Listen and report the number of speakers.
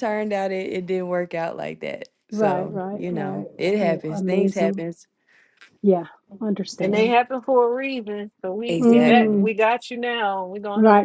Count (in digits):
3